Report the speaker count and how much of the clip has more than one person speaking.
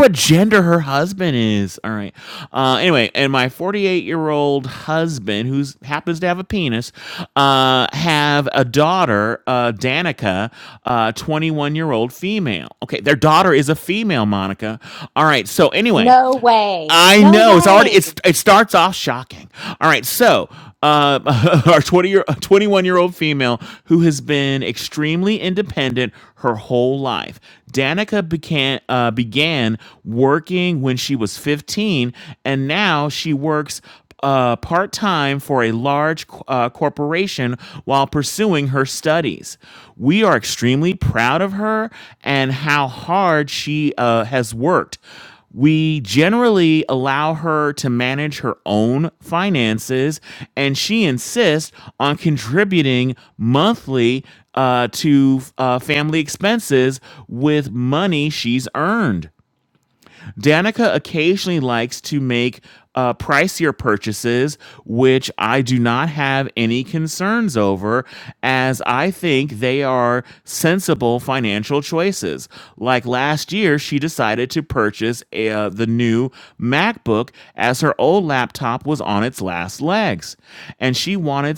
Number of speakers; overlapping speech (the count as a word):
two, about 2%